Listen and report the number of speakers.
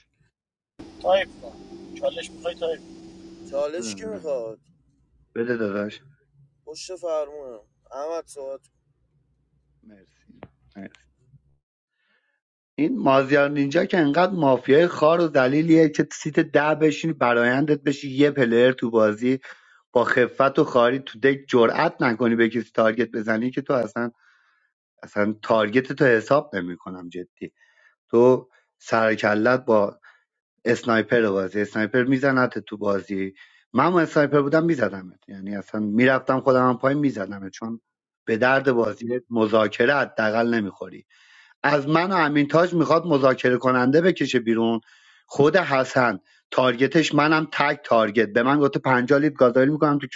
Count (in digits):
3